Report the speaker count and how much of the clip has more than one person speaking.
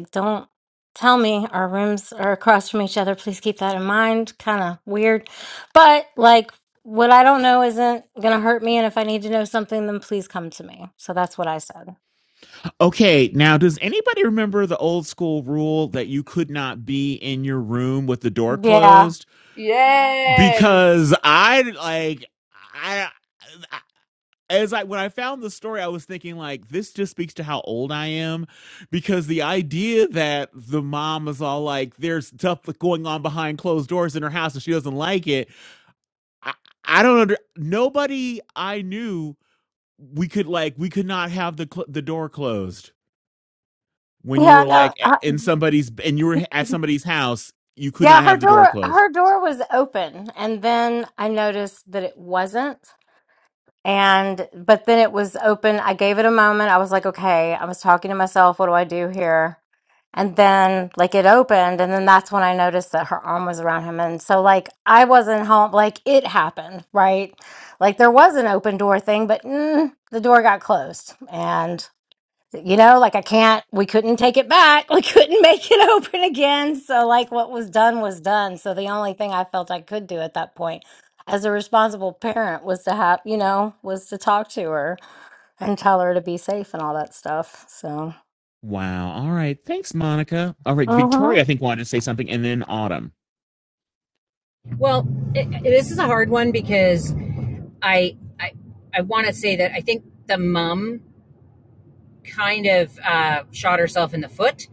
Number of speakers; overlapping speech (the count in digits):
4, about 3%